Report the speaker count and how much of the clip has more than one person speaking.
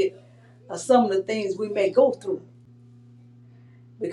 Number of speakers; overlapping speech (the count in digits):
1, no overlap